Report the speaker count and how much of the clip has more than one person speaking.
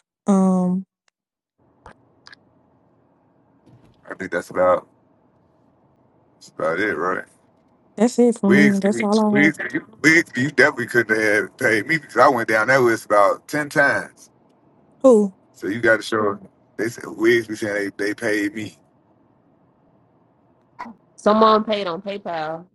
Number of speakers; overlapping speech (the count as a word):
three, about 5%